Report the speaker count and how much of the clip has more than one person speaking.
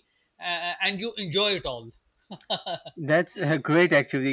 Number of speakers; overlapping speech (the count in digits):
2, no overlap